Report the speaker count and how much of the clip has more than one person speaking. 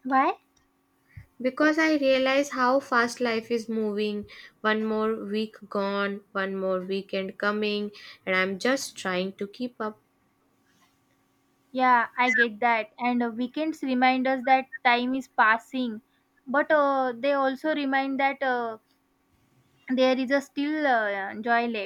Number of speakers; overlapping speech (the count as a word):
two, no overlap